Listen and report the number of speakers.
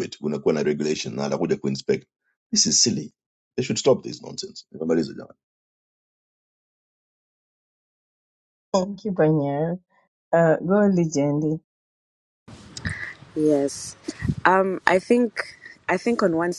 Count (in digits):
3